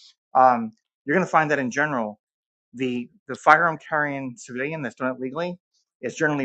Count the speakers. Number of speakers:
one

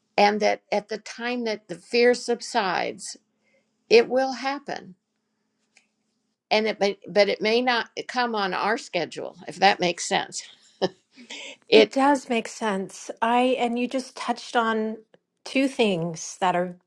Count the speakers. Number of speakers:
two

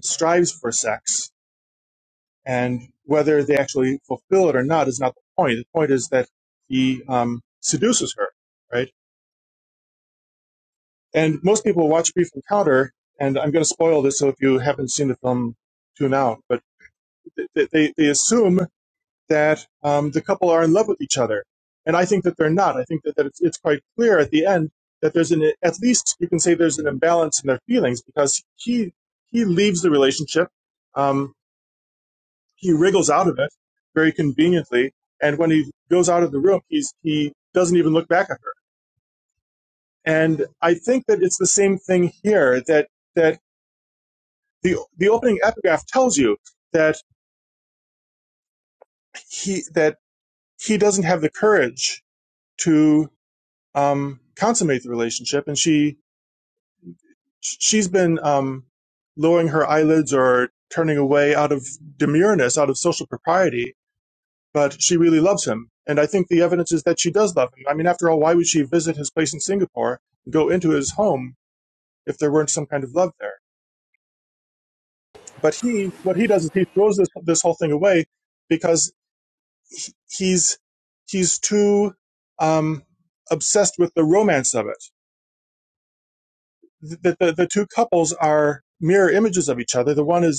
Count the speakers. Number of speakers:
one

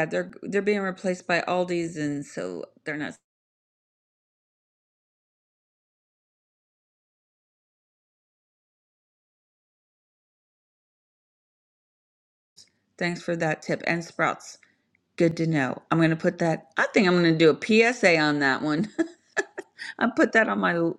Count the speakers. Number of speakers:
one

